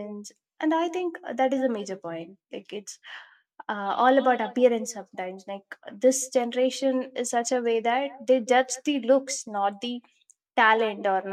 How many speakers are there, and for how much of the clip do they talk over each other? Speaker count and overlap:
one, no overlap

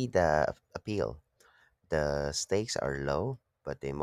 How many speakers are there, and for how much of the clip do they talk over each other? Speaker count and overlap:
one, no overlap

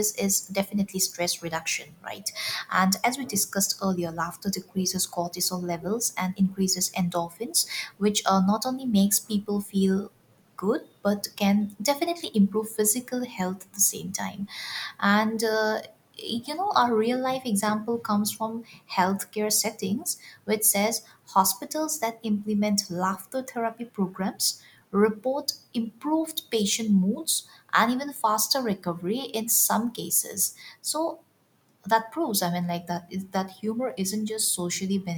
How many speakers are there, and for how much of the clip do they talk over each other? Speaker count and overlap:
one, no overlap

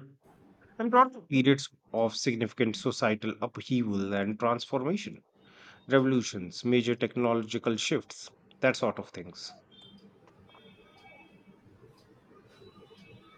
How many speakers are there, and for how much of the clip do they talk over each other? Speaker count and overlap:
one, no overlap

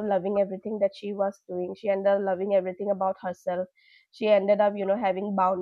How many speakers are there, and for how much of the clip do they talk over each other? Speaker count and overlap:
one, no overlap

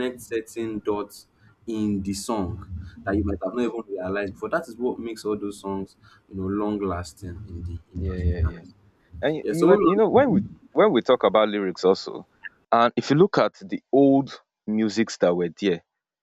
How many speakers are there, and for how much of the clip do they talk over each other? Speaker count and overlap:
two, about 7%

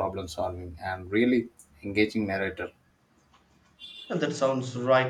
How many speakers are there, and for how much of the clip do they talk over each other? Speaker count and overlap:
two, no overlap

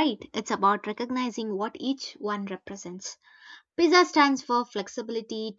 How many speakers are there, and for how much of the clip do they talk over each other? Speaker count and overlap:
one, no overlap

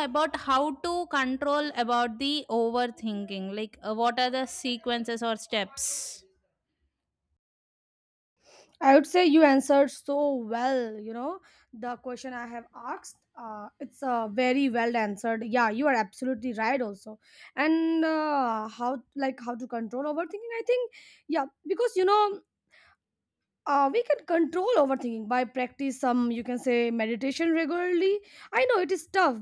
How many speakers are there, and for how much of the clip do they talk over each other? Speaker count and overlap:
two, no overlap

